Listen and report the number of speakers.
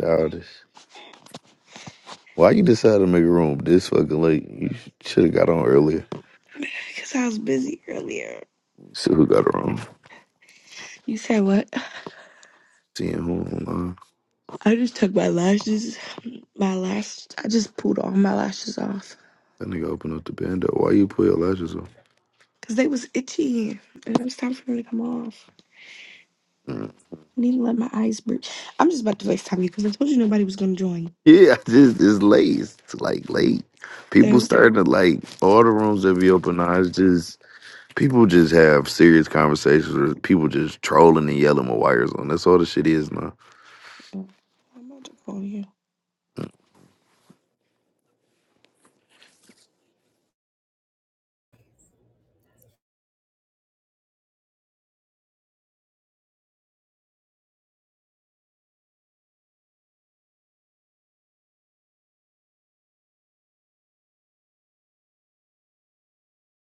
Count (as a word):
two